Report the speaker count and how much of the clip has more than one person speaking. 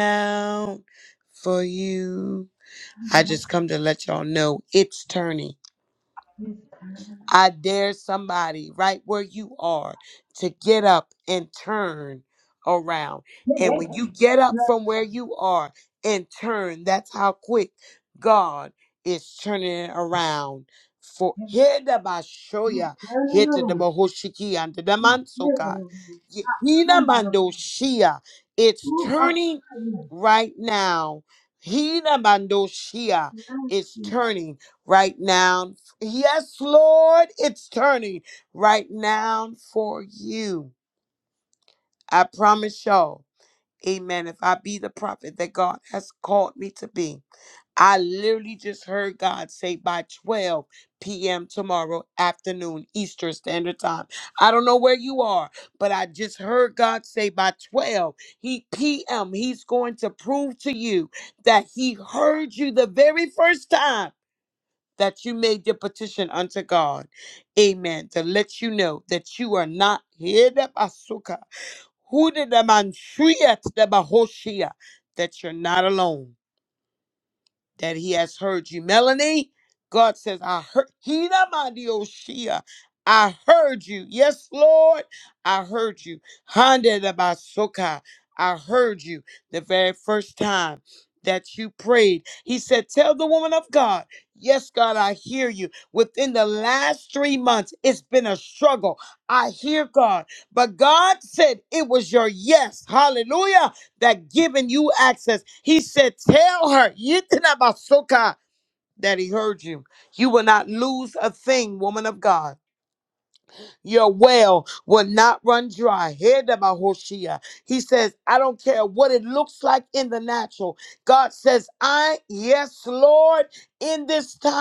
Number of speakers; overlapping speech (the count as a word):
two, about 2%